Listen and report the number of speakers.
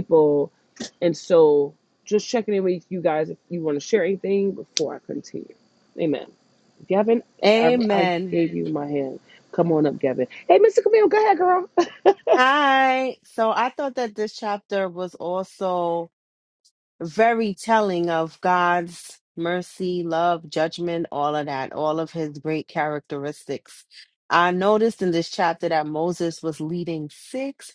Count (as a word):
two